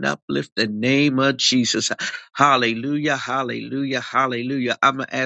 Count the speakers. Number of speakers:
1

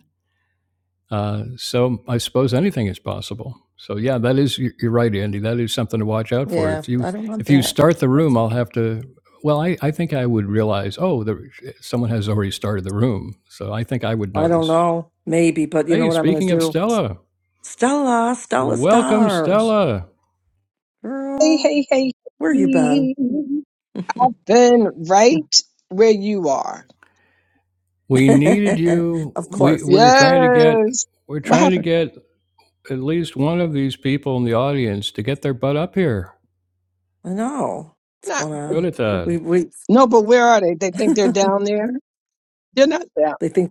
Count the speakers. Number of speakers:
3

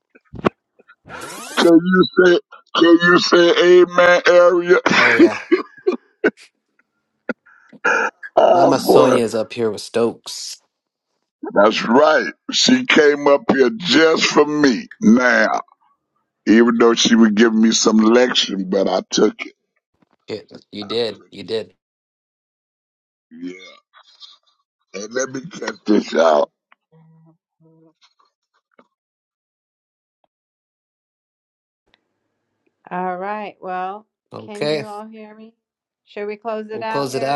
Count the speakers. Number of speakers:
3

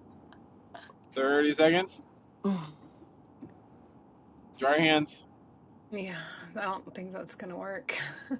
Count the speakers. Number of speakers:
2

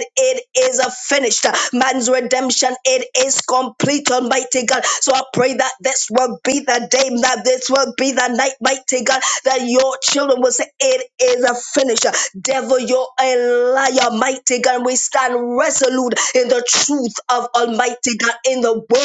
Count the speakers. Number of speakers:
1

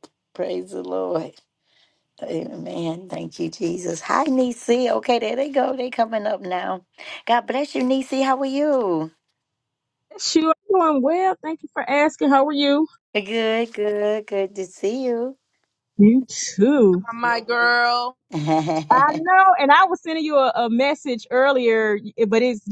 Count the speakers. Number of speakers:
3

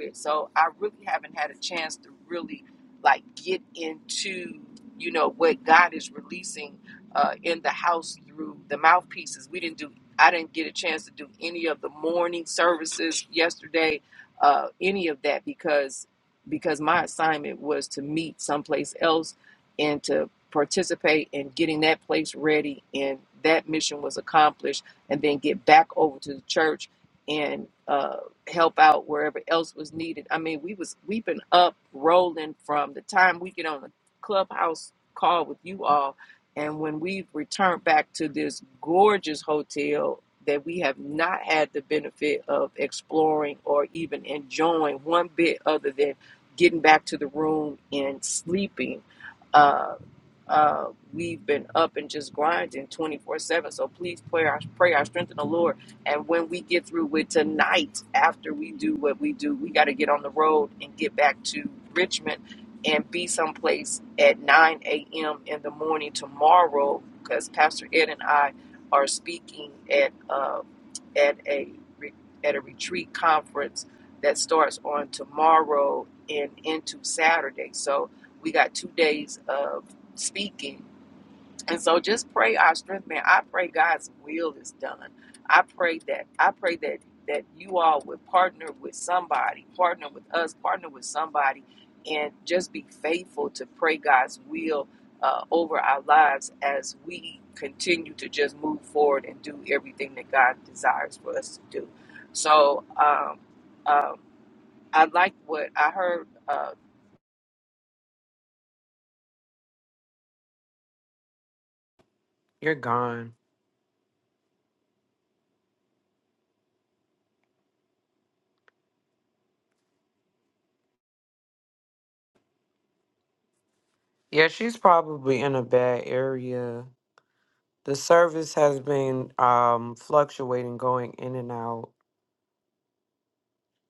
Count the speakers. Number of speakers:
2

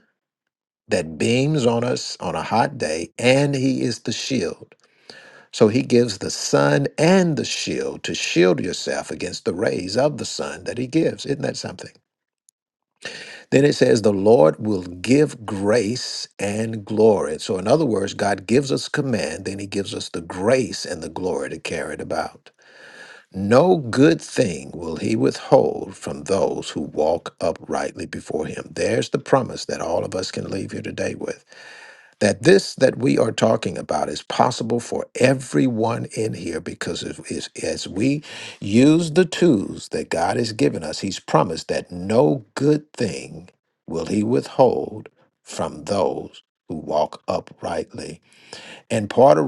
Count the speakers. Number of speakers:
1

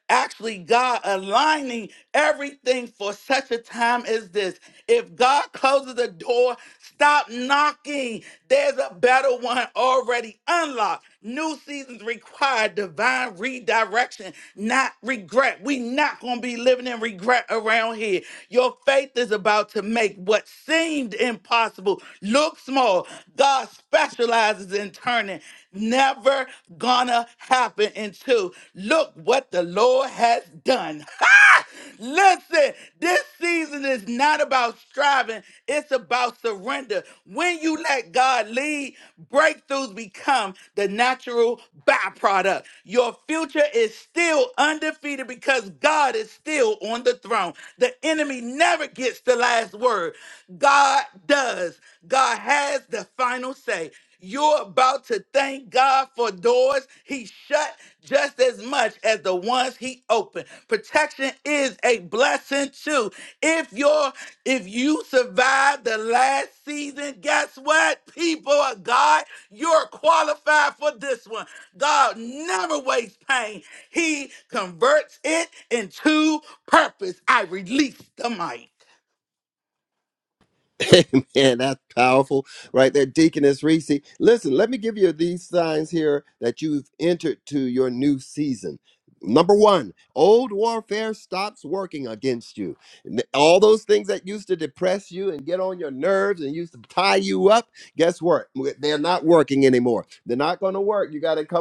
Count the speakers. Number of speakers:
2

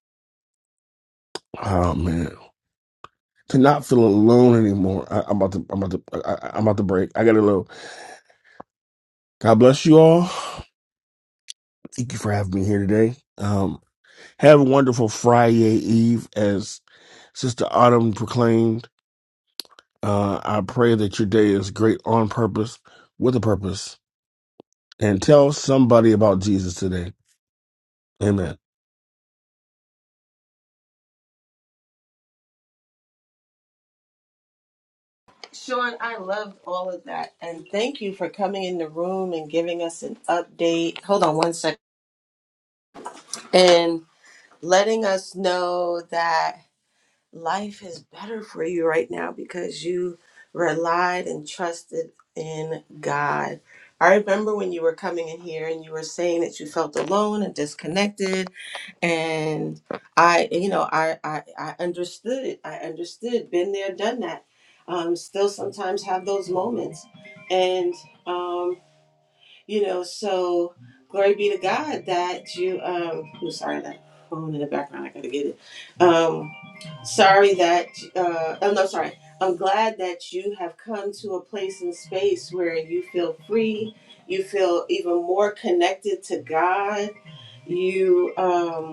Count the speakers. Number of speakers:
2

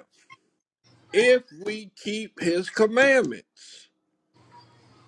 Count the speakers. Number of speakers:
1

